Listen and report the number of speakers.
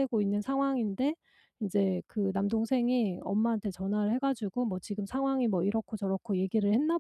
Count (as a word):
one